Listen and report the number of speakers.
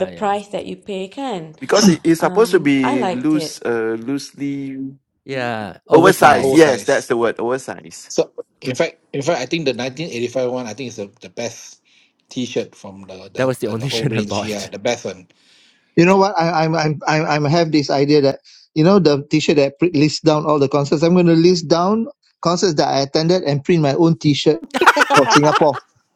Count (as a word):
five